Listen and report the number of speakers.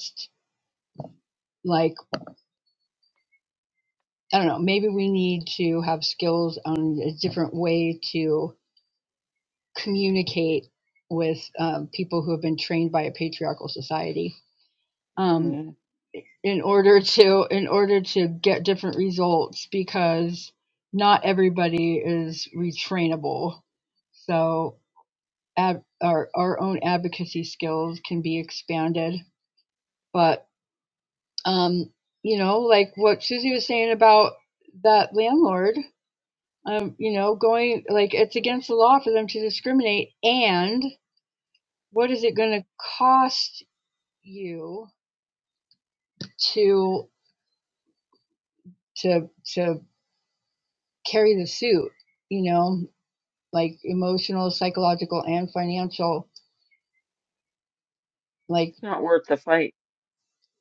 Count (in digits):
2